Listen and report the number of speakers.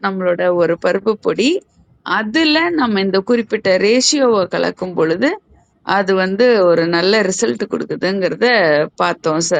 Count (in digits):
1